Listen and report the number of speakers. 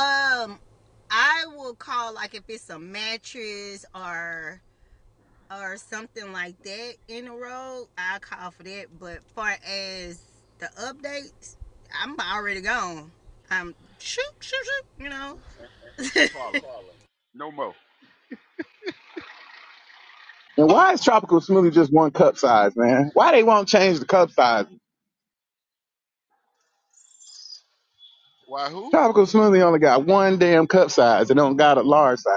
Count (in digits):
3